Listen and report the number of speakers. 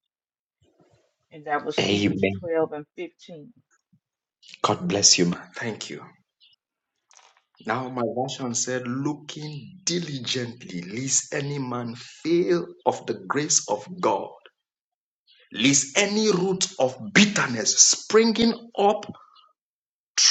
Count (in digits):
2